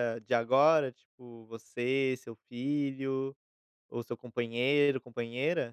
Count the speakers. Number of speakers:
1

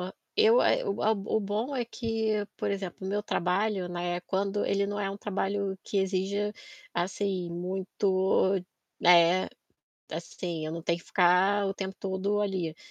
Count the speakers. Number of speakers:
1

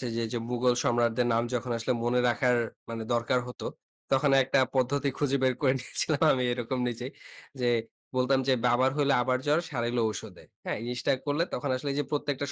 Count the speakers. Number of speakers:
1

